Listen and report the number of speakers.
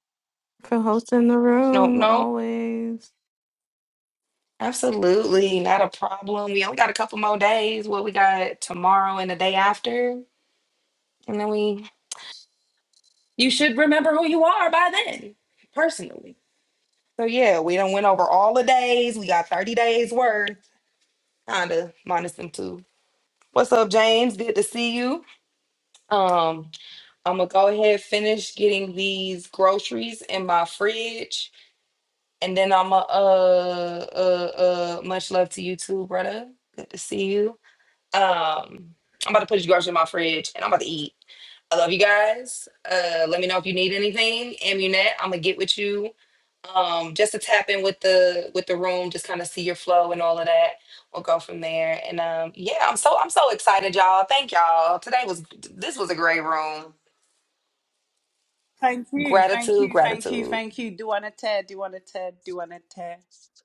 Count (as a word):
three